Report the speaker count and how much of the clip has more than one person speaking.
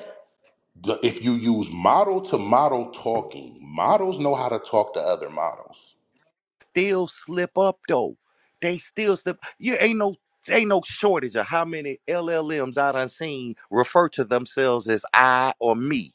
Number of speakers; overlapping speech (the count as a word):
two, no overlap